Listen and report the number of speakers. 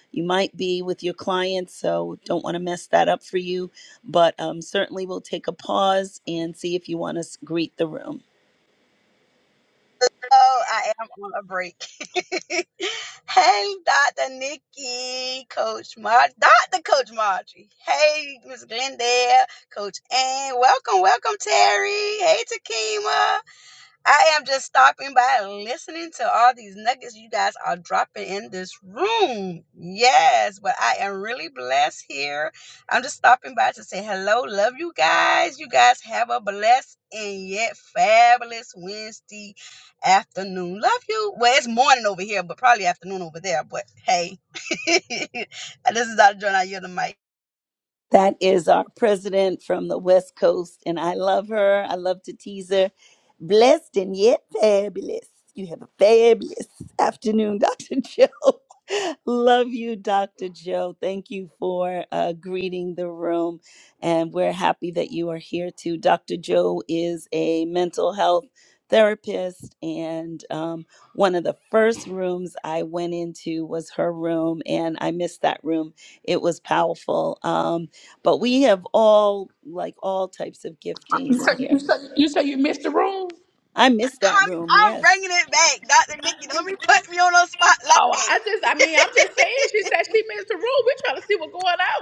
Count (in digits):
3